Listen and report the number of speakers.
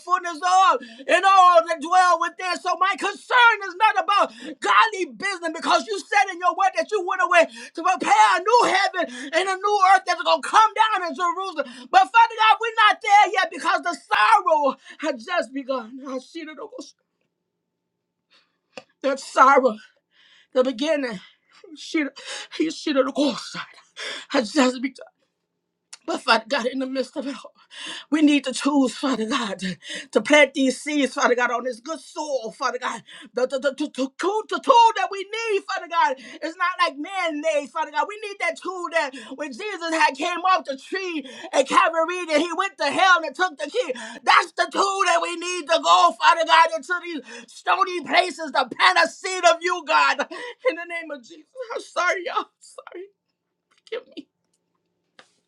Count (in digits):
1